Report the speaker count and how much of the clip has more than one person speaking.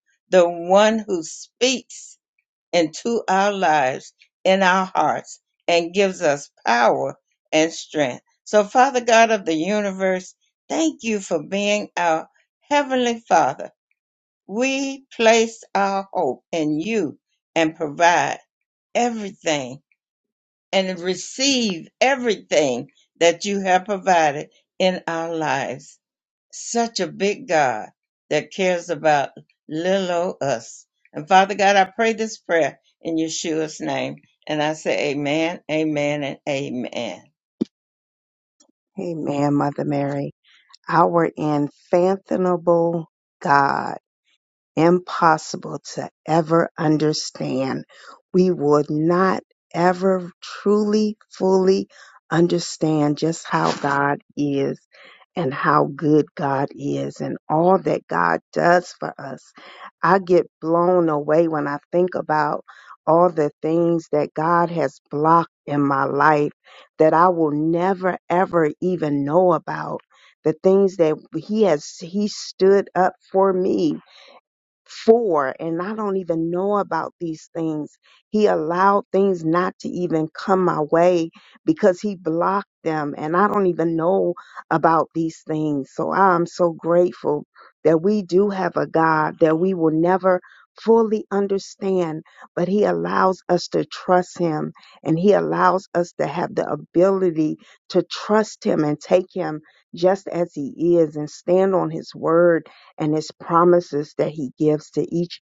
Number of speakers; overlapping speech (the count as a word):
two, no overlap